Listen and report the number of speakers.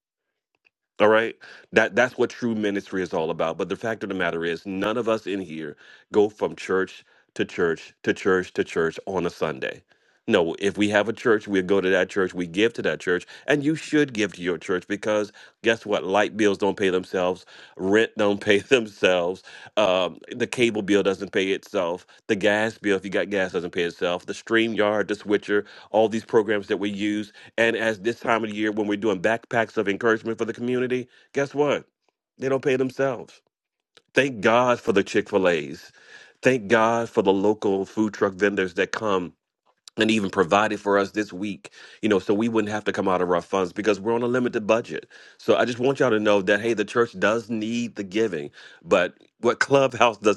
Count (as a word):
one